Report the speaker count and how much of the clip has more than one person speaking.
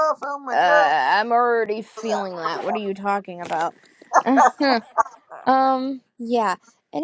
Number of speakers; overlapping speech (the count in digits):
2, about 5%